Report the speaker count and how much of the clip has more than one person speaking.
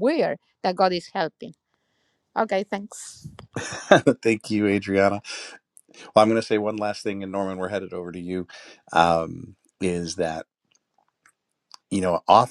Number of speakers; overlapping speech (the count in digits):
2, no overlap